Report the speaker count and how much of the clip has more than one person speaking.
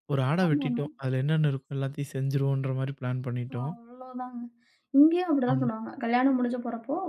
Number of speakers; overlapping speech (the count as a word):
two, about 12%